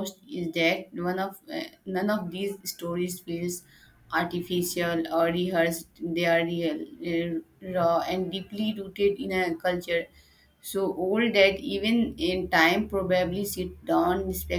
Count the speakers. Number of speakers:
1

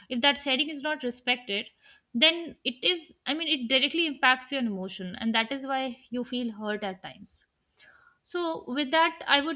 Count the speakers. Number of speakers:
1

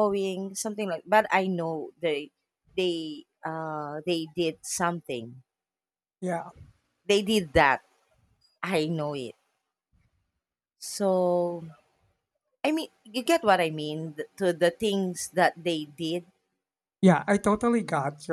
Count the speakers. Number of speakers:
2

